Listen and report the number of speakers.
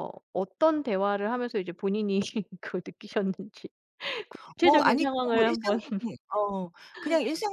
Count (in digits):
2